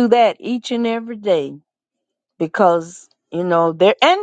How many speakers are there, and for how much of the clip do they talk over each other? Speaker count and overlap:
one, no overlap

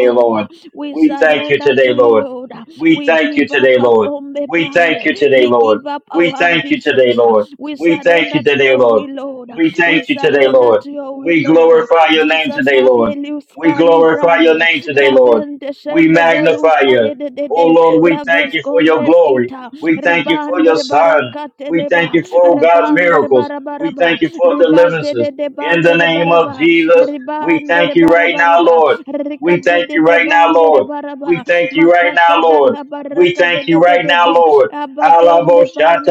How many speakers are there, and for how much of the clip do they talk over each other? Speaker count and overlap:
two, about 75%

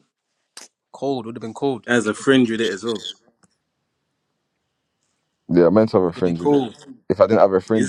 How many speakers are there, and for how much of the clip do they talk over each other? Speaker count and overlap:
three, about 9%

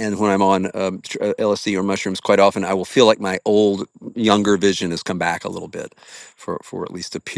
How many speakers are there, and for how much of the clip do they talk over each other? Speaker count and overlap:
one, no overlap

